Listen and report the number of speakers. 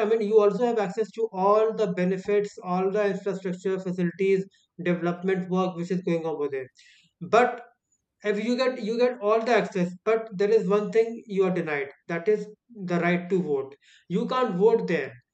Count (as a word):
one